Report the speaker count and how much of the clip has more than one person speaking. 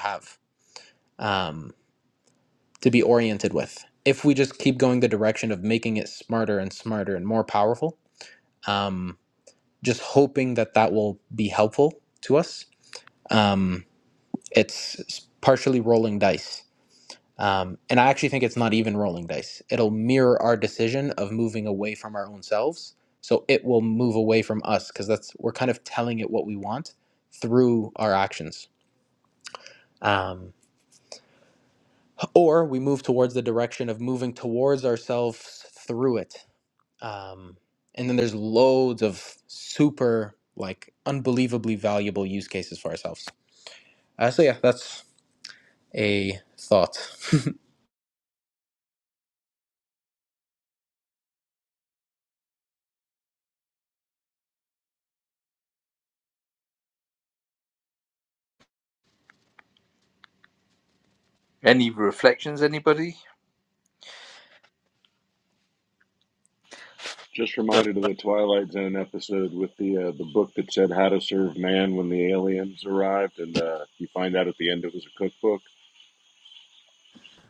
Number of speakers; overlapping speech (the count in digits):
3, no overlap